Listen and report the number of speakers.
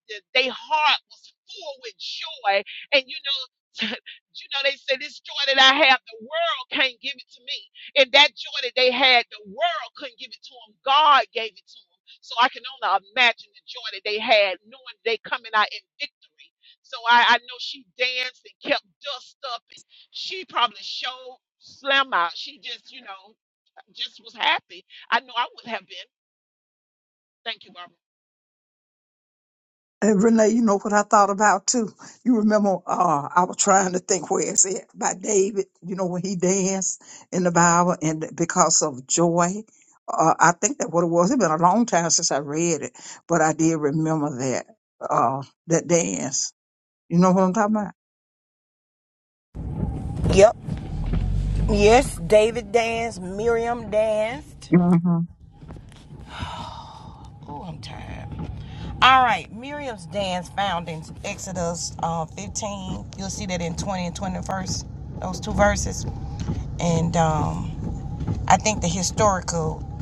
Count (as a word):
three